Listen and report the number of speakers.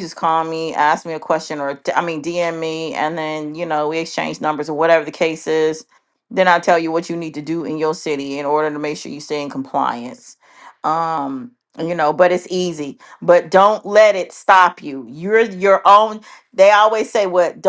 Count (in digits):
1